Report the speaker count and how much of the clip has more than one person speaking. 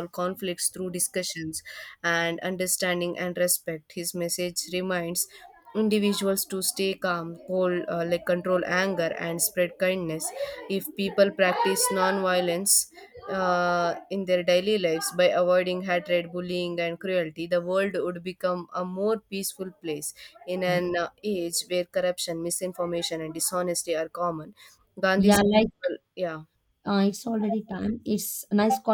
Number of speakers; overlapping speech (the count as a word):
two, about 1%